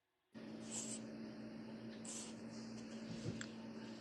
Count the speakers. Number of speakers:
0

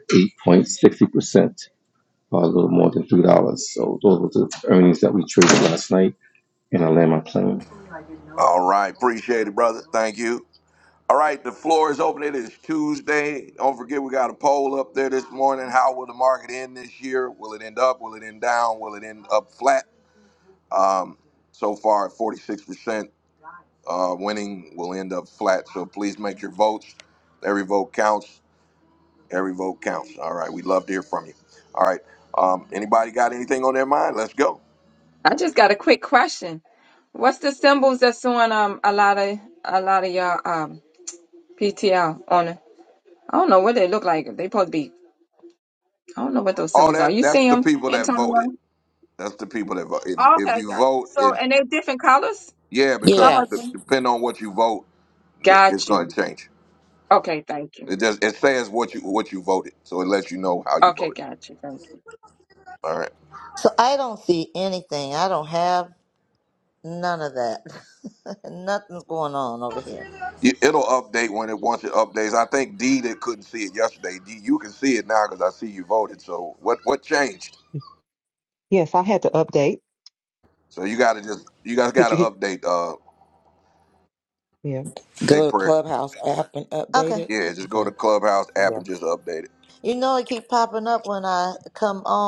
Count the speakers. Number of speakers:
6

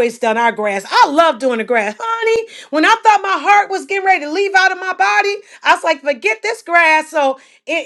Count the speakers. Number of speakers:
1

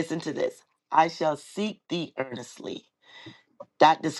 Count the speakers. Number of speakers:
1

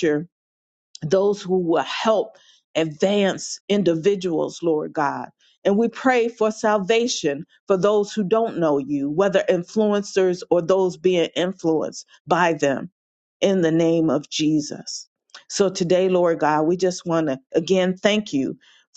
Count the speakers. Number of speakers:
1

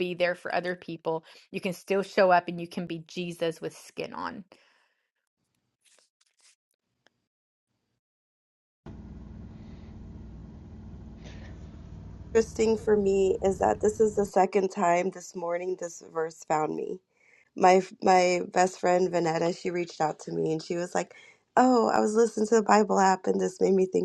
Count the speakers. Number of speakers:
2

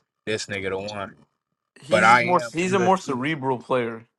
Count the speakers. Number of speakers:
2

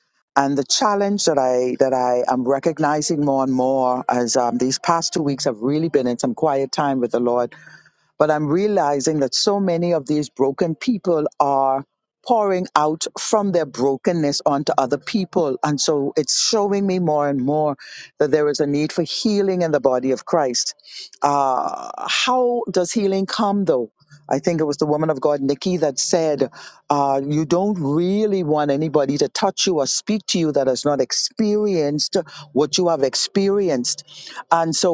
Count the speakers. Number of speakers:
1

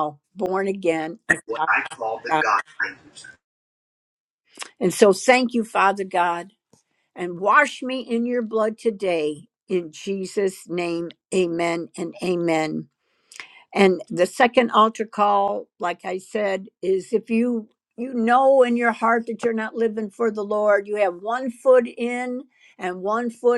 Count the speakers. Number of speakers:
2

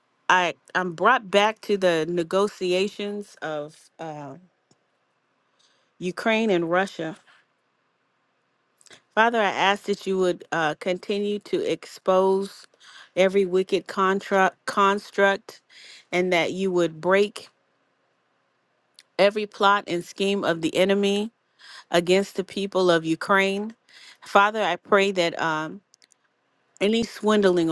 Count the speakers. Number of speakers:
1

